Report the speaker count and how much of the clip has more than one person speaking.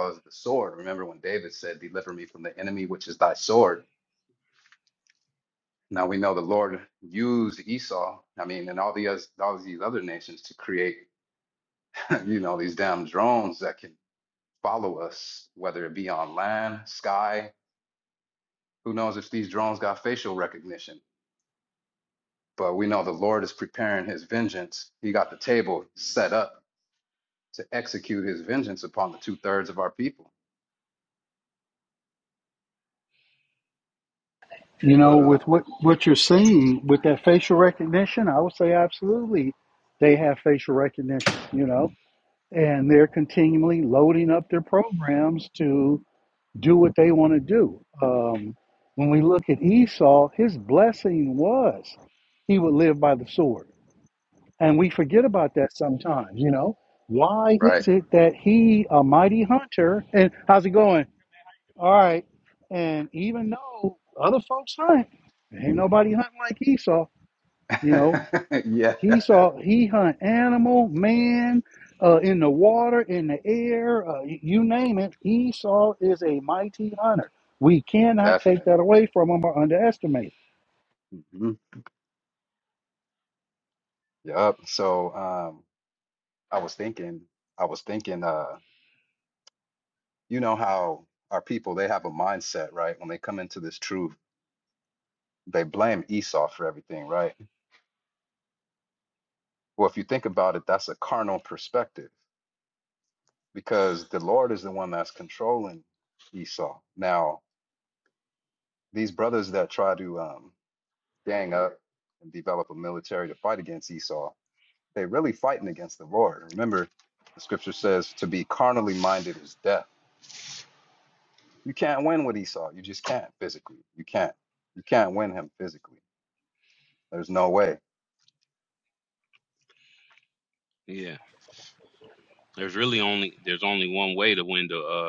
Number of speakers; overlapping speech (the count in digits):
3, about 1%